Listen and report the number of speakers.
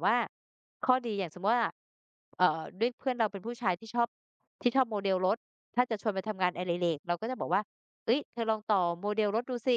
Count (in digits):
1